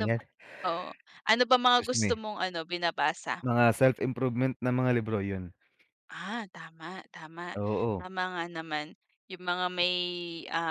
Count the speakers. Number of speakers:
2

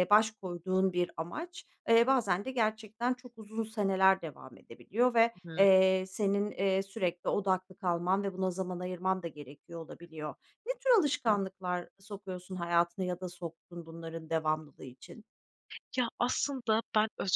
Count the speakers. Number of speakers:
2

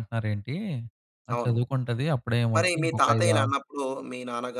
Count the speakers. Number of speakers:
2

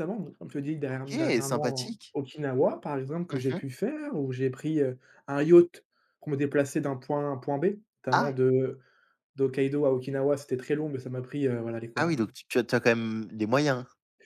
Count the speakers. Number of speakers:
2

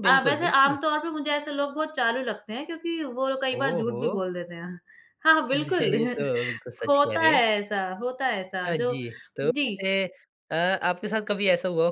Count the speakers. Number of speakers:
2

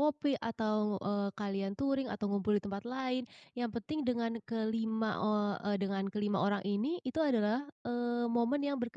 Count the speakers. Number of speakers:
1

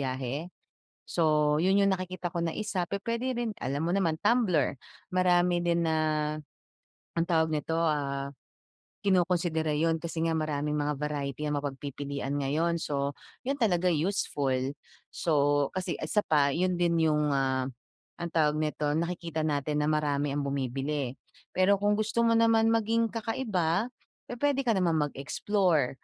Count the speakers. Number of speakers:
1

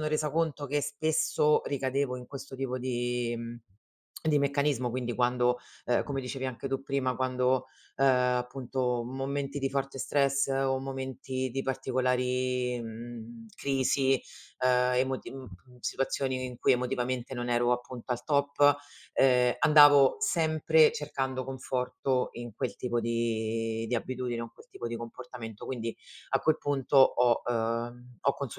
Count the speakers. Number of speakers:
1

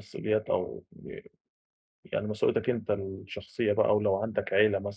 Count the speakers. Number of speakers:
1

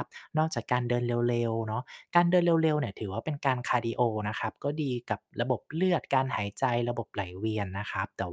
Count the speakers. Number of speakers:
1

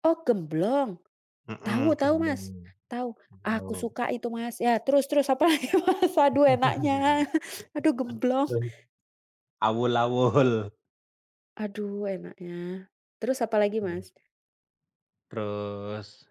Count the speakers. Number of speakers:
2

